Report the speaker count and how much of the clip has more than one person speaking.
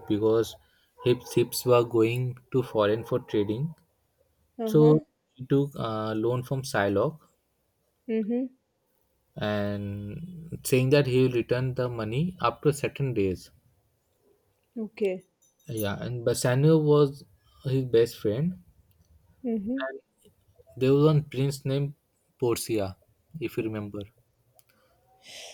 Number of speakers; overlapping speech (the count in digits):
2, about 1%